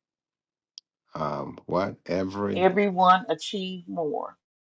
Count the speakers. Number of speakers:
2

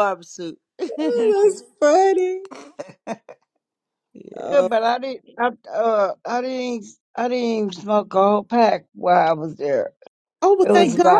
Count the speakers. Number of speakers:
3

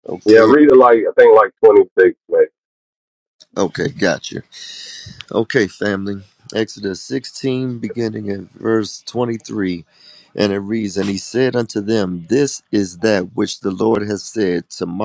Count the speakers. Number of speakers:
2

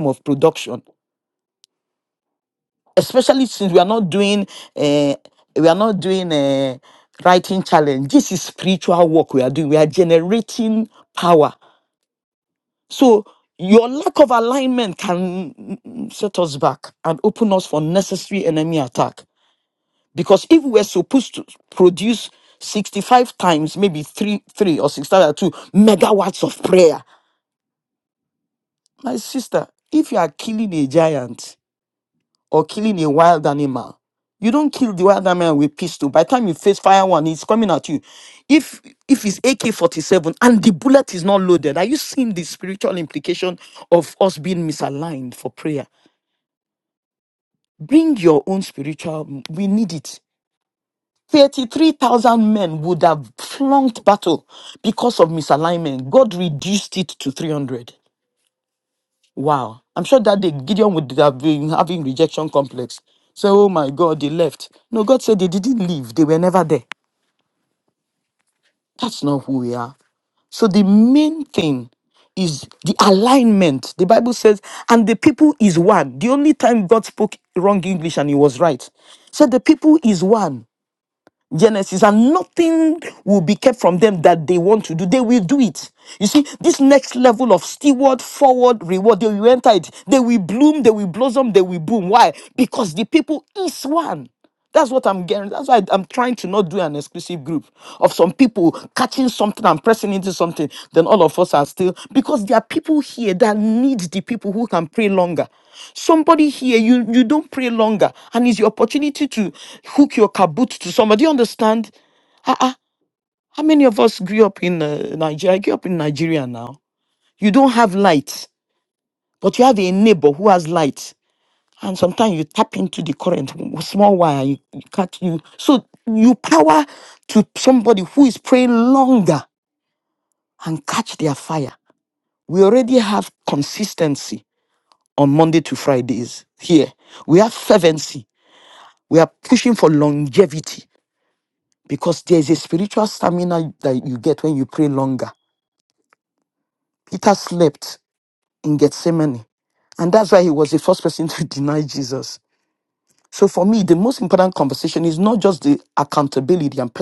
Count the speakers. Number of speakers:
1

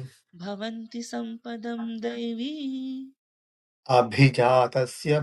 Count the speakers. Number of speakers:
2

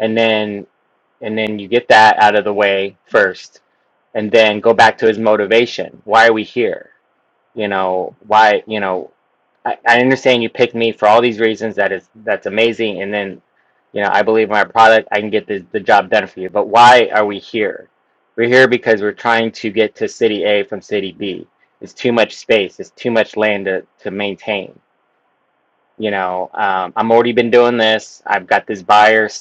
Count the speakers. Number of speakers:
1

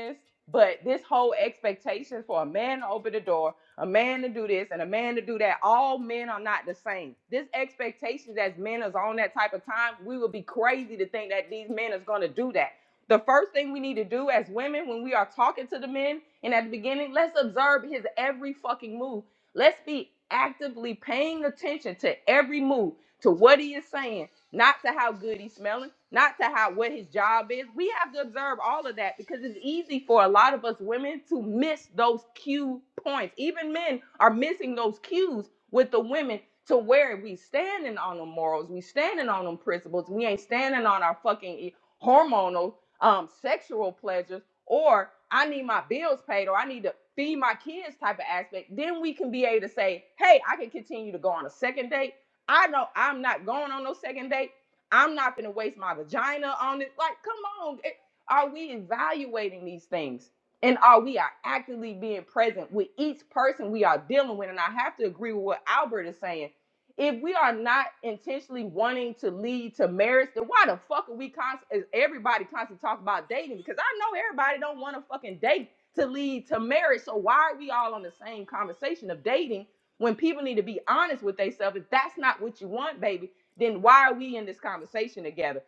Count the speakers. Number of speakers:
1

